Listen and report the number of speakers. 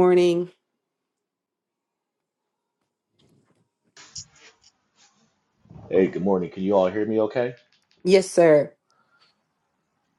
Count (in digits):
2